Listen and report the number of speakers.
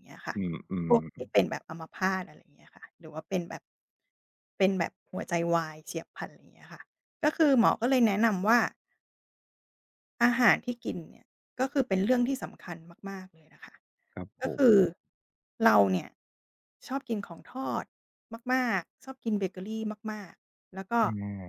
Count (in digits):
2